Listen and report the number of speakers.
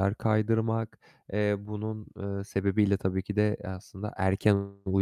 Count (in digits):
1